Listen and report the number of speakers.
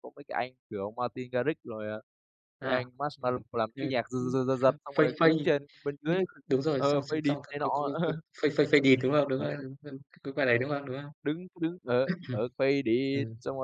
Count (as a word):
two